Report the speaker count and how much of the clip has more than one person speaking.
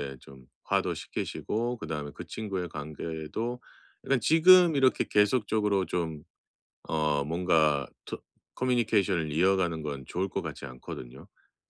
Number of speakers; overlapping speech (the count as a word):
one, no overlap